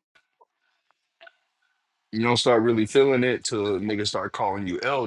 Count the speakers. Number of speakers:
one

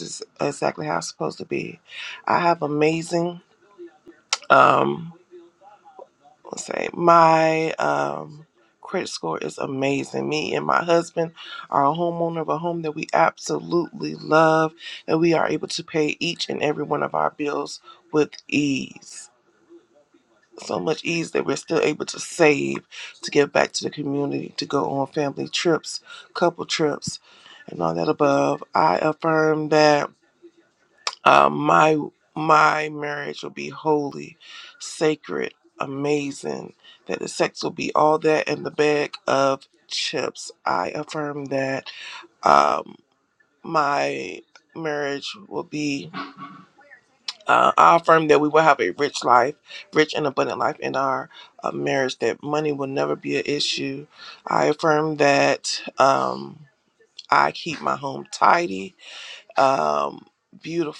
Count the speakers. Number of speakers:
one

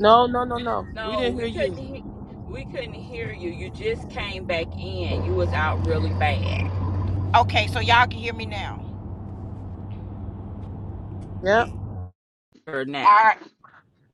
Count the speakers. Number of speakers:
three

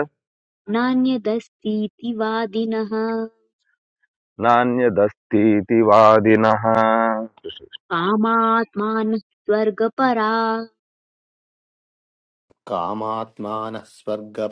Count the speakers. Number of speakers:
three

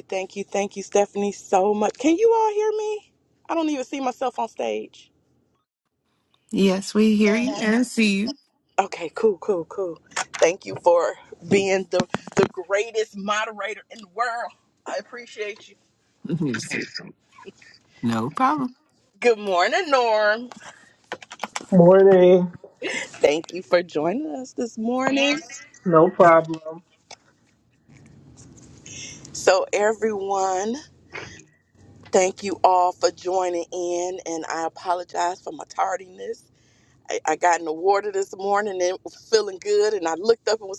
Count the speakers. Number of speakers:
three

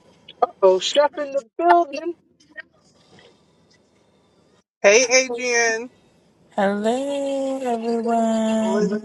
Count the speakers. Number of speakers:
three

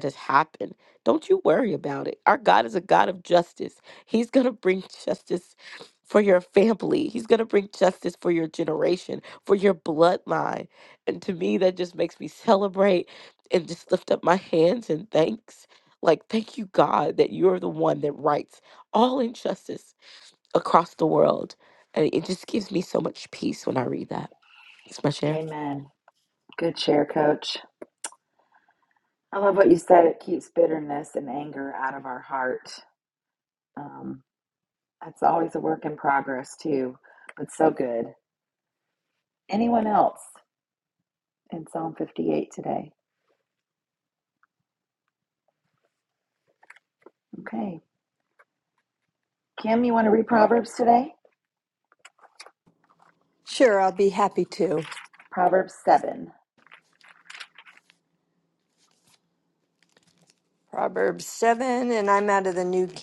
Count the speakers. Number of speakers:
three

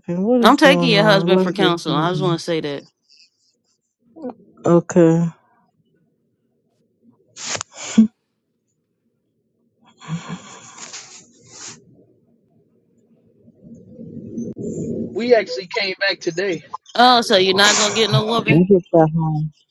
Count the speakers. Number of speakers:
three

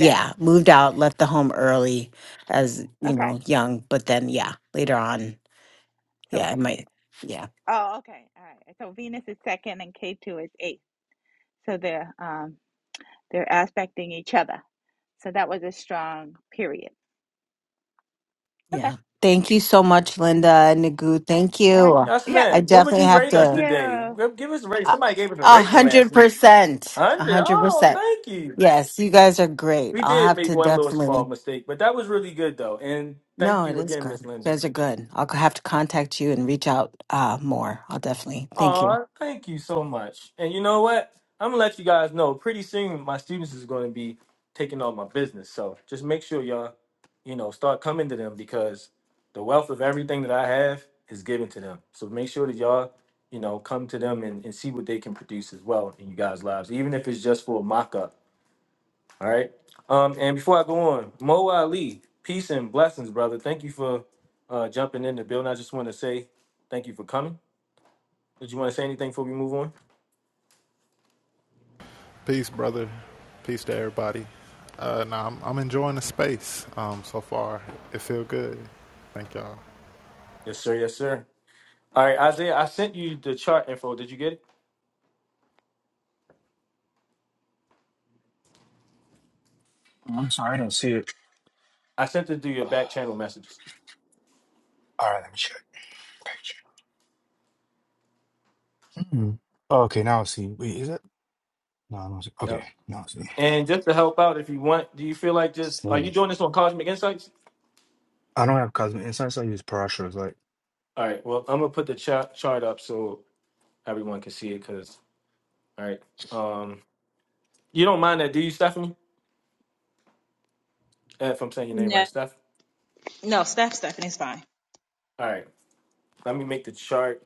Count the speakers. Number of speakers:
six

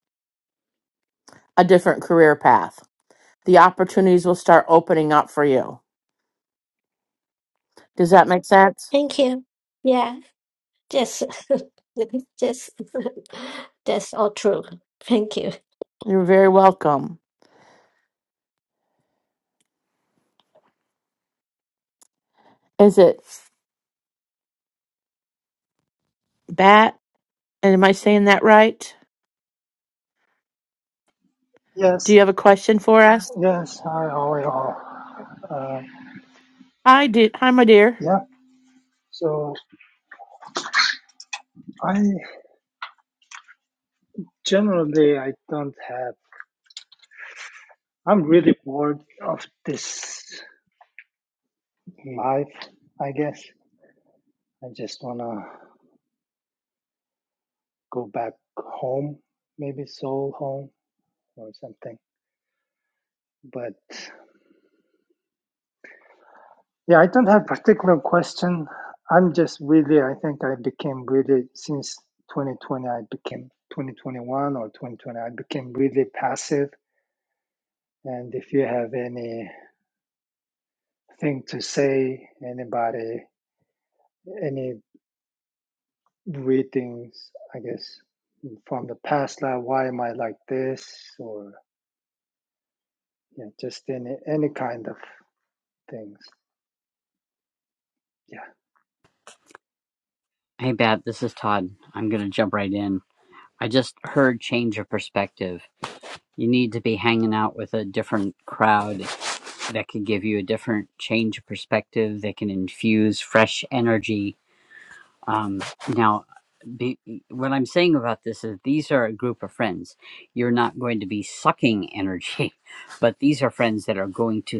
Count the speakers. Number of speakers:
four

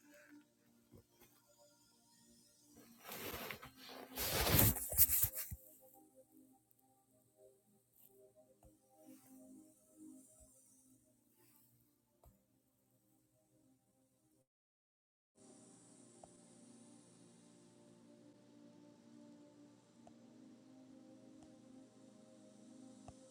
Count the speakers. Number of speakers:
zero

